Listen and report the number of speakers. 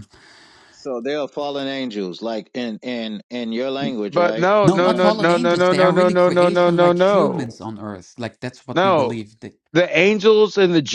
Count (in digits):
3